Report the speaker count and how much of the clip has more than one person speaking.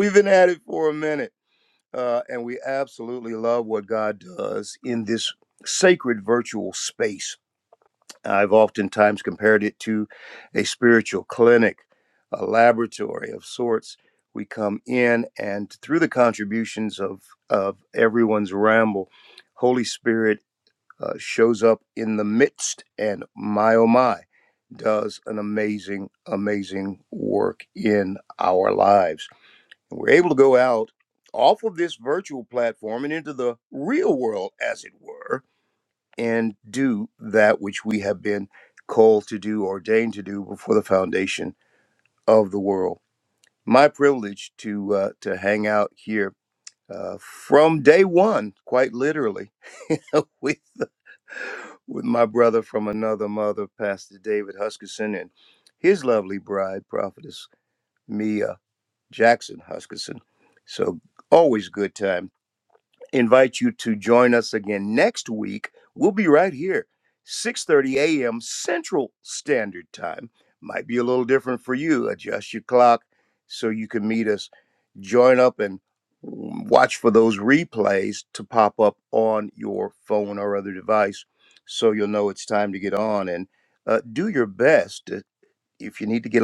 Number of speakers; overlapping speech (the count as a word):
one, no overlap